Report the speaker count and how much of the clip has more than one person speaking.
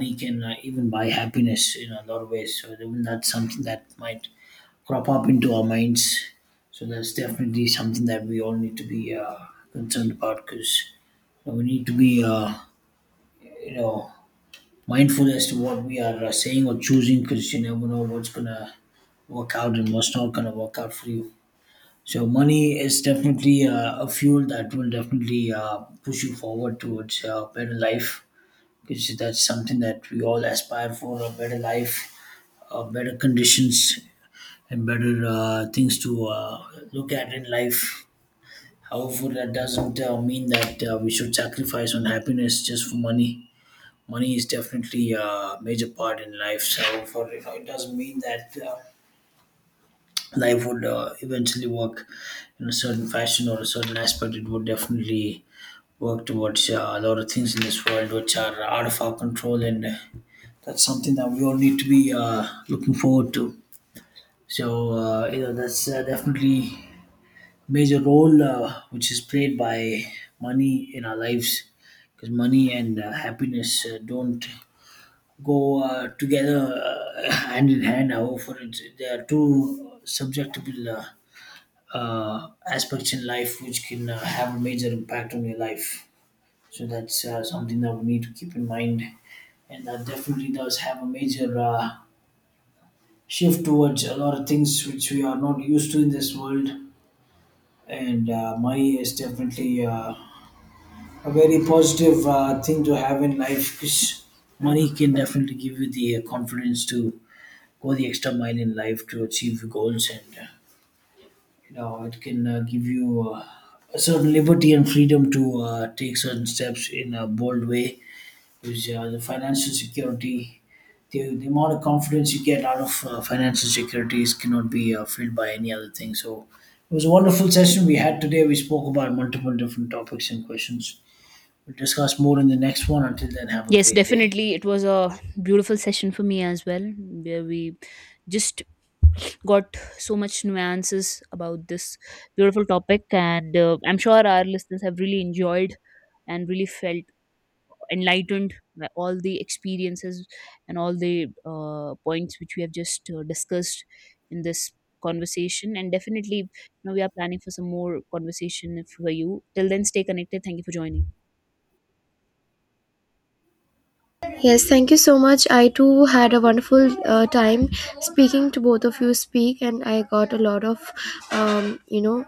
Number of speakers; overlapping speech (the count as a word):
three, under 1%